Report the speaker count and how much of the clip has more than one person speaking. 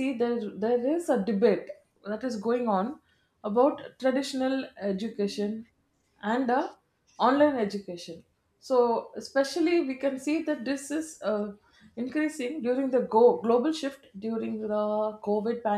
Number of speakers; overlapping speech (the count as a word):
one, no overlap